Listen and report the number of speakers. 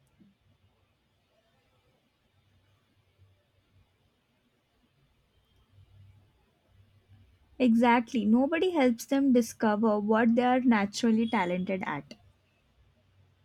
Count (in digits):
1